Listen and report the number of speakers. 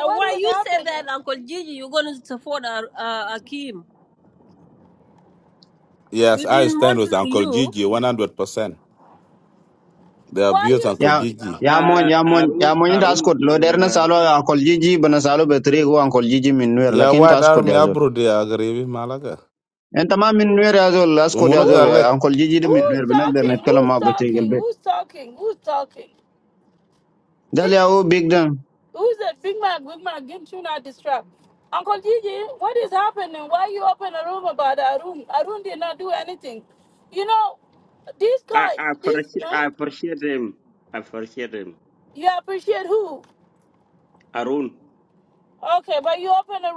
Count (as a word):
five